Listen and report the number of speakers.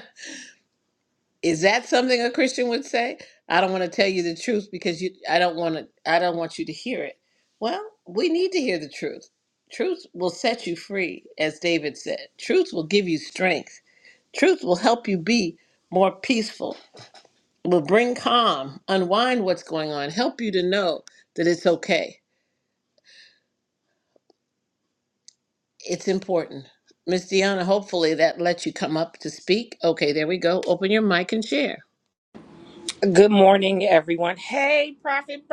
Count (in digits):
2